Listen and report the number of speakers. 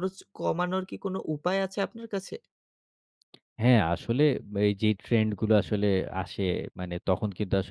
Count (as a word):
two